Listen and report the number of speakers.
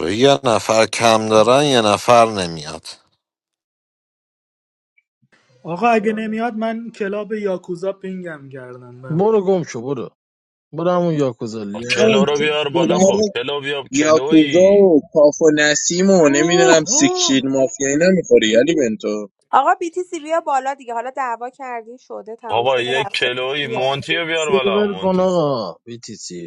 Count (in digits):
6